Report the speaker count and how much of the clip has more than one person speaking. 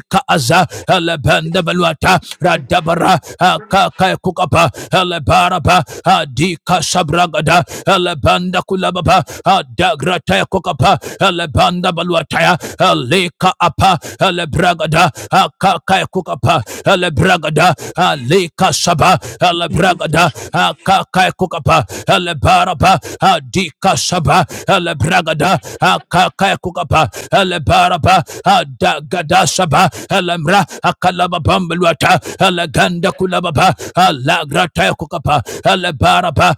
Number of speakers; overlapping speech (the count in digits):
1, no overlap